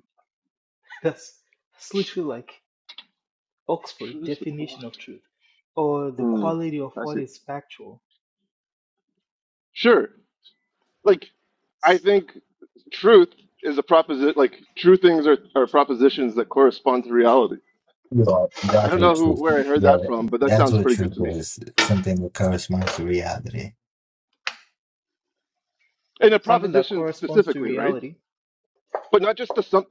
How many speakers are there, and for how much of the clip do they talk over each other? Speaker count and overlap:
three, about 15%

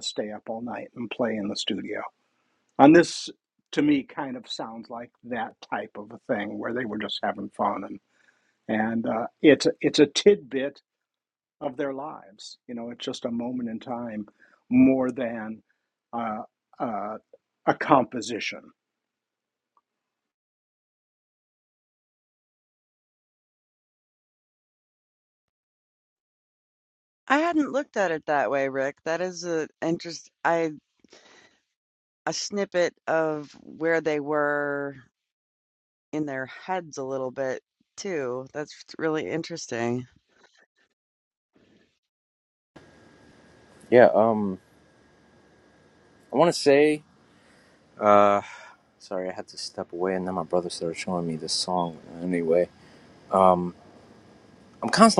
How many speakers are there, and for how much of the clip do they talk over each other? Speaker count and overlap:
three, no overlap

